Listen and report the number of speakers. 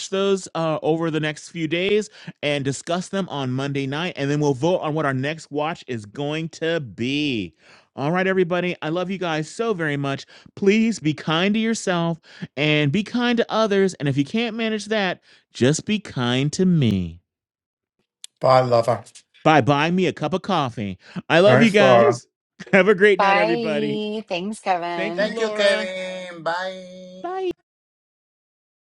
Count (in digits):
4